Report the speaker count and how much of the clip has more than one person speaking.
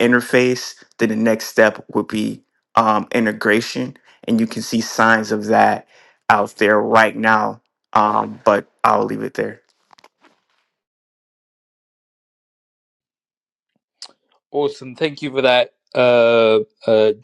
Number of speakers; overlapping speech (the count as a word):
two, no overlap